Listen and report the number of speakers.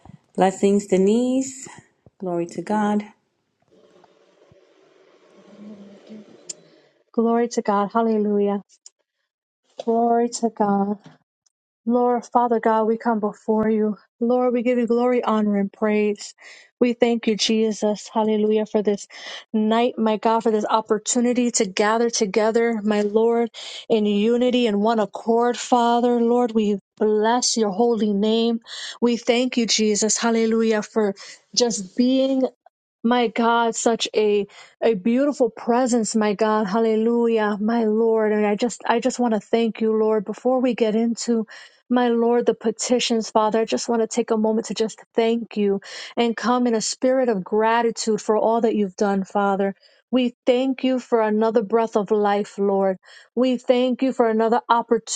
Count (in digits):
2